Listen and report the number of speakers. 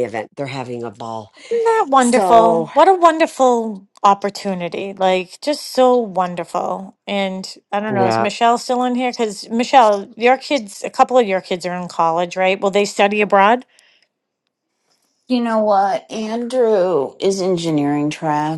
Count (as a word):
three